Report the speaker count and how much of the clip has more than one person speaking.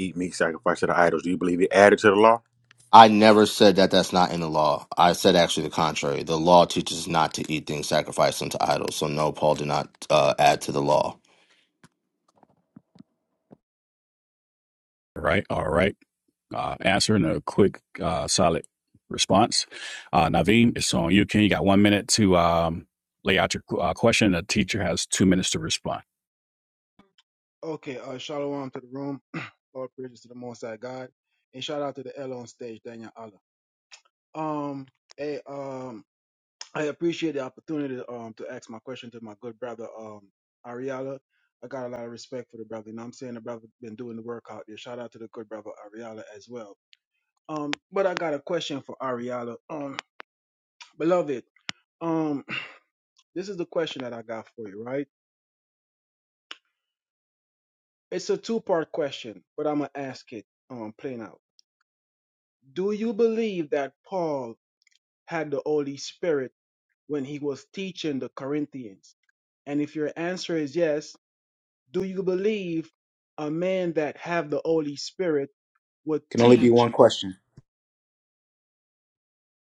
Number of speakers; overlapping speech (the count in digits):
5, about 1%